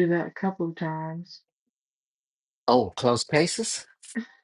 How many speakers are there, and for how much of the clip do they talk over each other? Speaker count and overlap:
2, no overlap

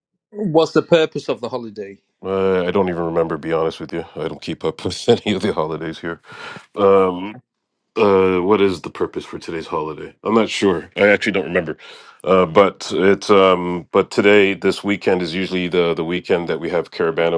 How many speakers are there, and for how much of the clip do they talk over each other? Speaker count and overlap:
2, no overlap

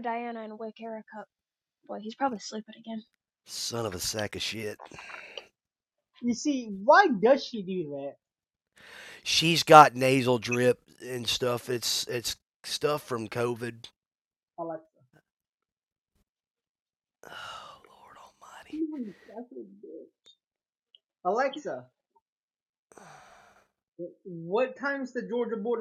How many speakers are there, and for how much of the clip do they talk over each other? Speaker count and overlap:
3, no overlap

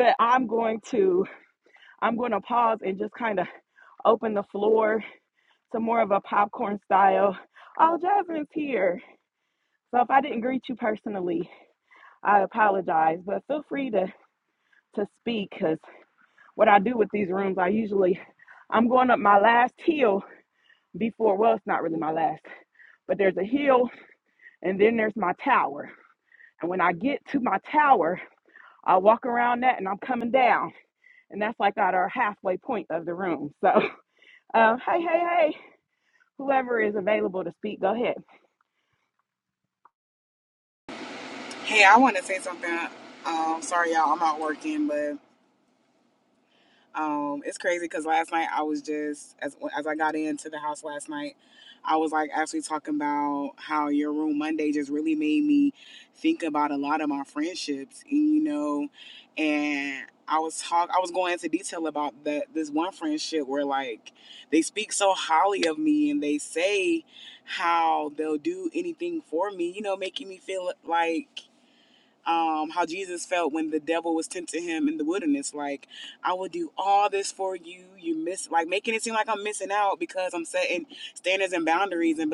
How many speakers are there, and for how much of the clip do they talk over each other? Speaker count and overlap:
2, no overlap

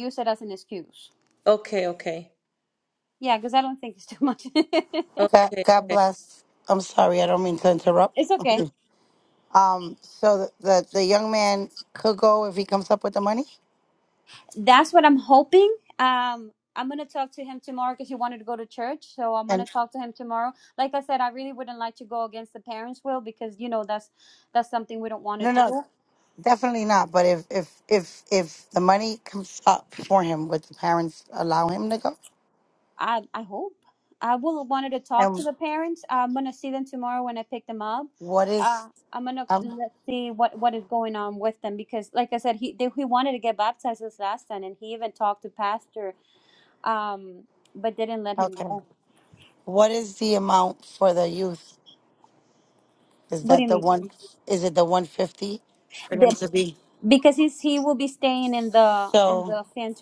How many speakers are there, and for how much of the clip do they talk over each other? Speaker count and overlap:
3, about 6%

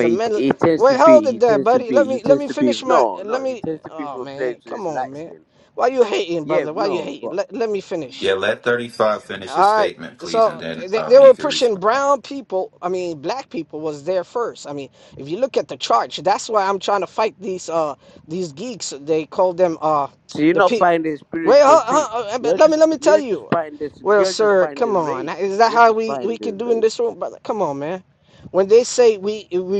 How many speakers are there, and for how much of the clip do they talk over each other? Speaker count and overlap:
3, about 44%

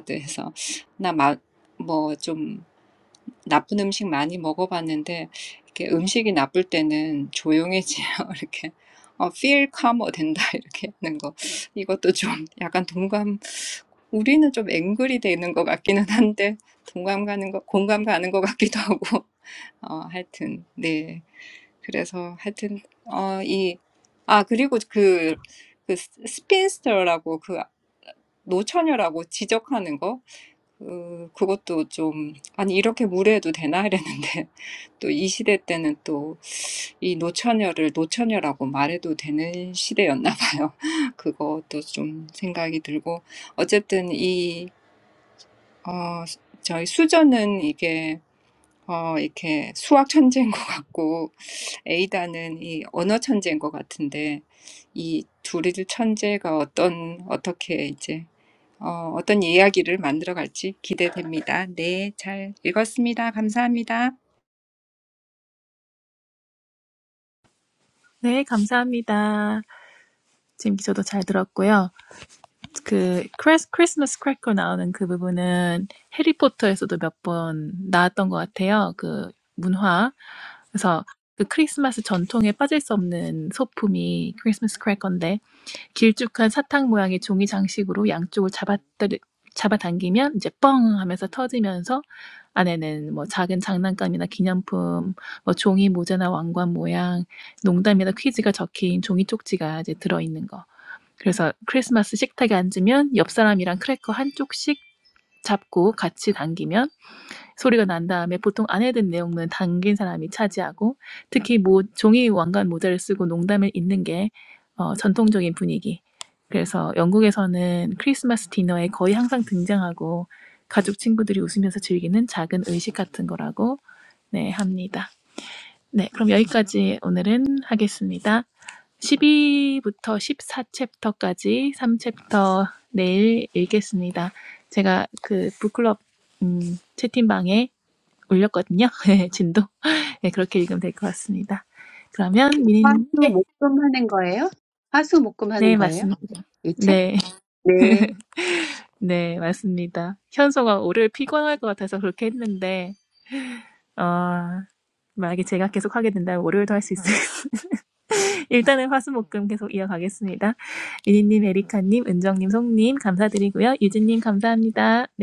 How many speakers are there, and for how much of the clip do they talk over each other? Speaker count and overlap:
3, about 1%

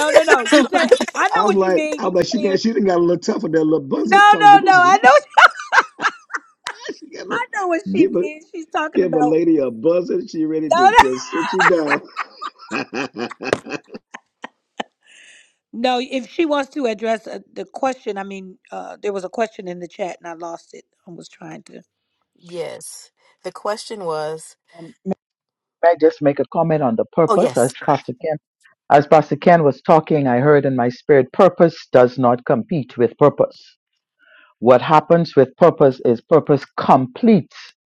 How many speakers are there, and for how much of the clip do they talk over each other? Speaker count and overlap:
4, about 11%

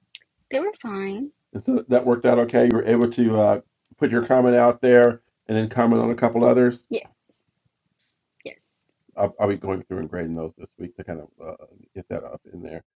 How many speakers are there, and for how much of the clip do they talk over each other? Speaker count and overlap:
2, no overlap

